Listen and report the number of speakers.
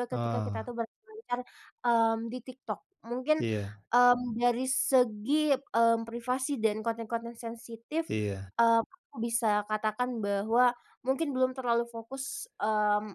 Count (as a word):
two